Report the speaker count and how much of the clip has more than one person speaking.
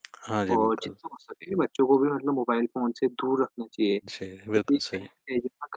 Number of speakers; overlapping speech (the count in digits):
2, about 17%